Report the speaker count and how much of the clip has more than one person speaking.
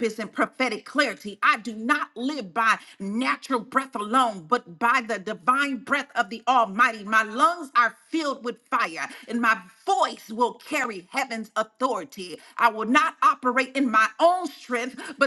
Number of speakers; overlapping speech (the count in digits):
1, no overlap